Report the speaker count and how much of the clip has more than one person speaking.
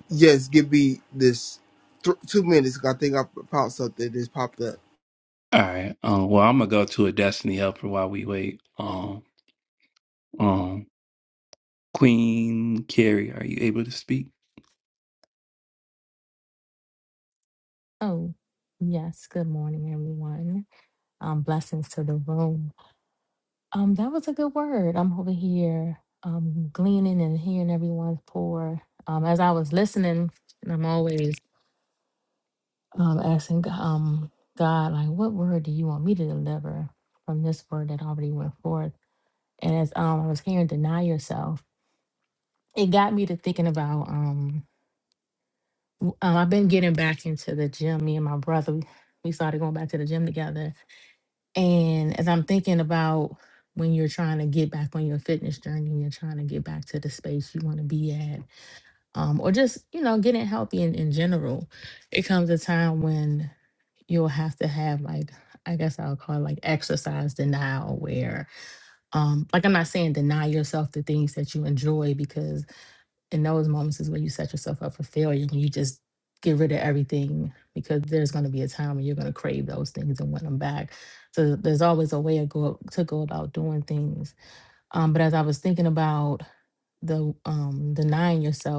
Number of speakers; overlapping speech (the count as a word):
three, no overlap